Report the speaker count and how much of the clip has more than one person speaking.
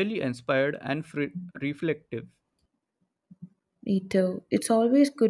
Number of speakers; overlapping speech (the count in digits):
2, no overlap